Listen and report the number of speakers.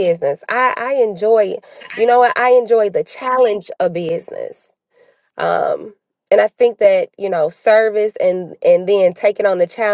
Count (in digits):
1